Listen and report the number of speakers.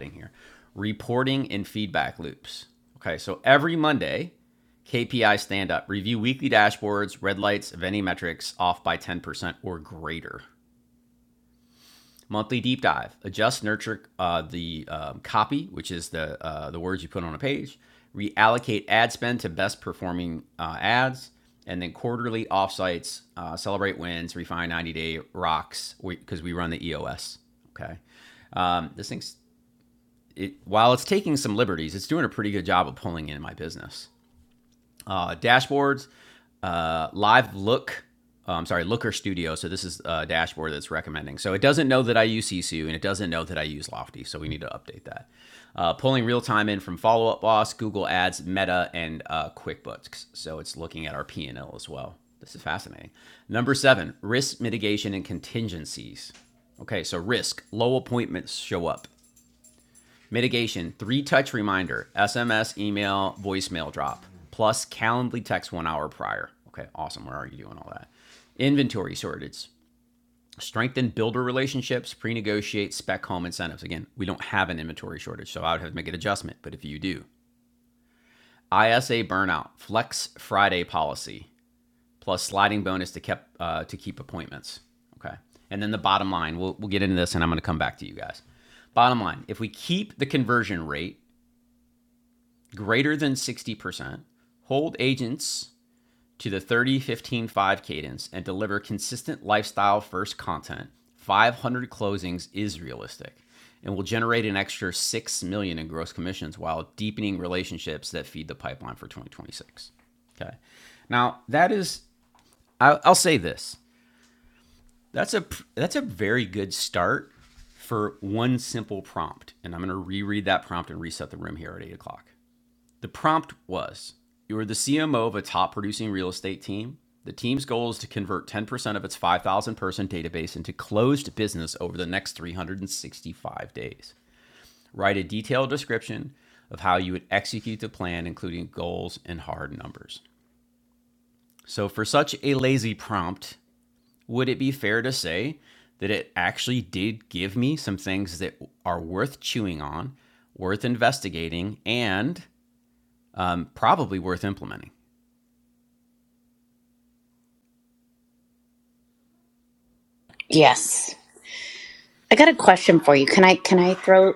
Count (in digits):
2